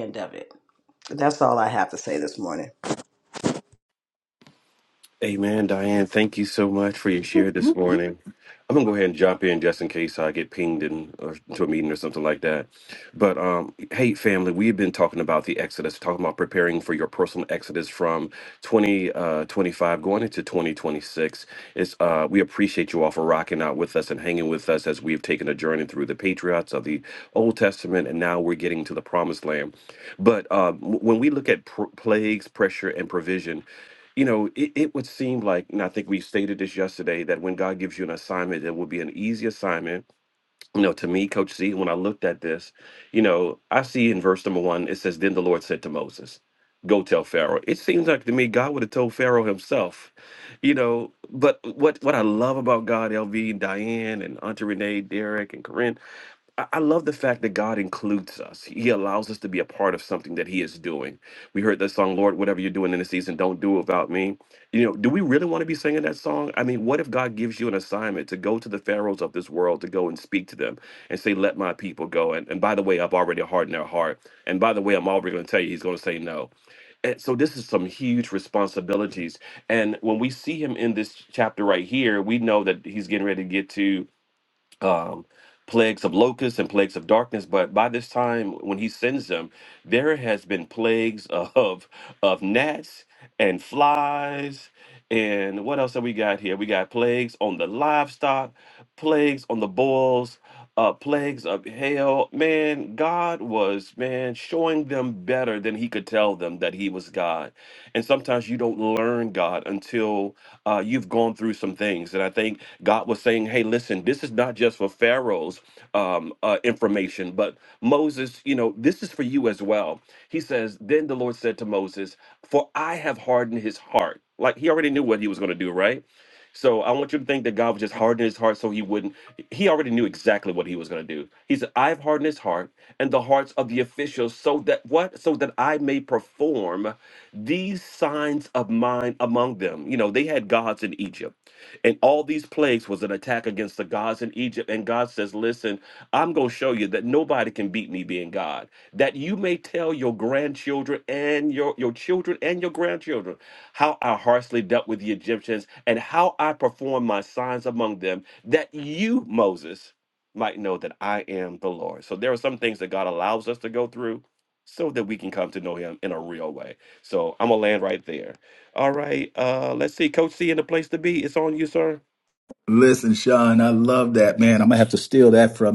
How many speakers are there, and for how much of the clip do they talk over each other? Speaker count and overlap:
3, no overlap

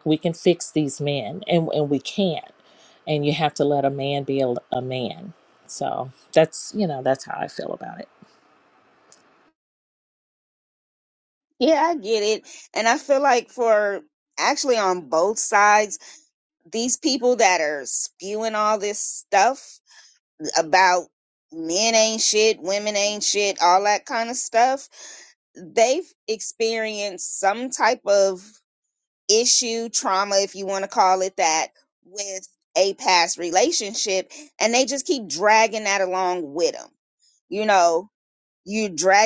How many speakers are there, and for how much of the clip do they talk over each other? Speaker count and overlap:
2, no overlap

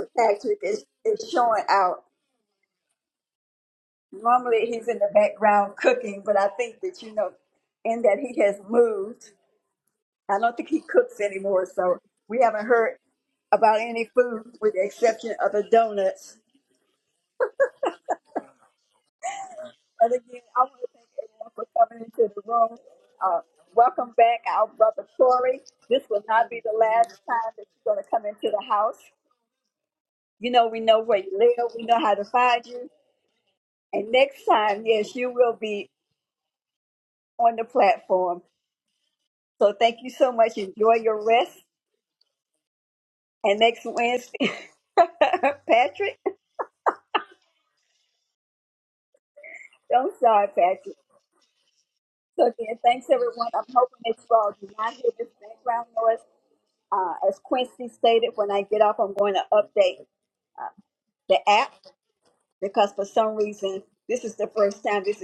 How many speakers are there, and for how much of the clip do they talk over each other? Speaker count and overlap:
1, no overlap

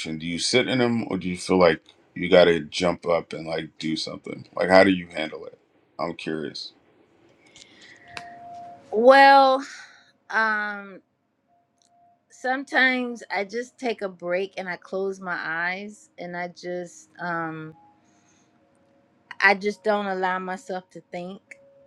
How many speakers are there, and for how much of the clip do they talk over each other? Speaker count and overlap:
2, no overlap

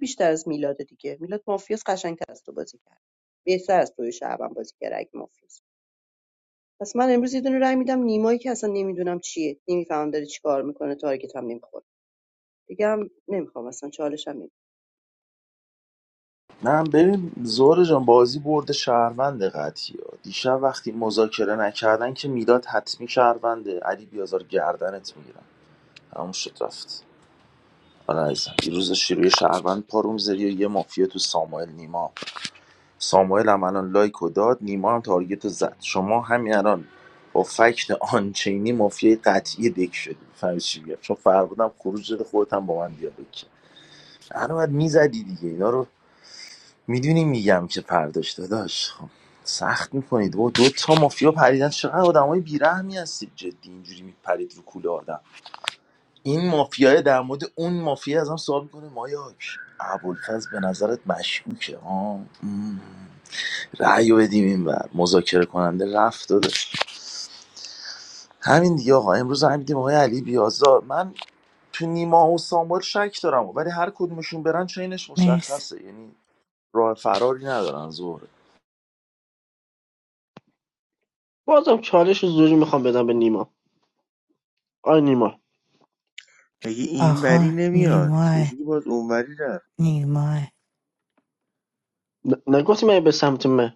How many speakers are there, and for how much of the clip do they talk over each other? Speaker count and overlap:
5, about 2%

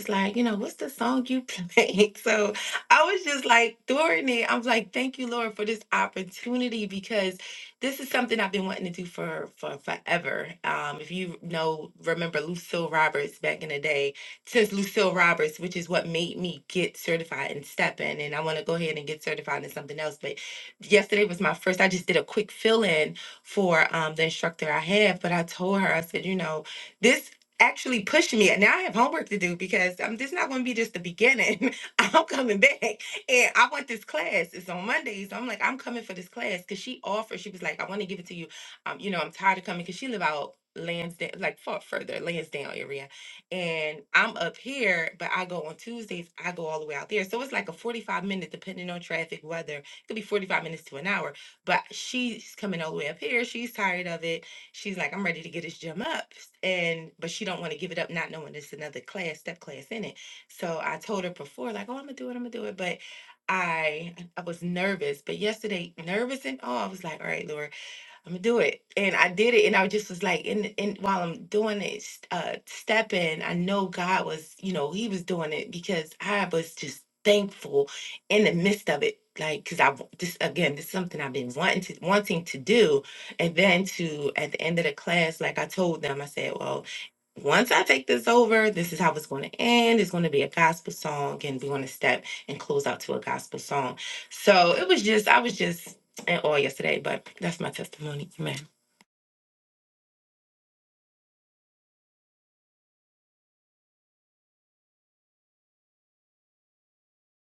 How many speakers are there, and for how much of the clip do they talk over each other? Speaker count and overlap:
1, no overlap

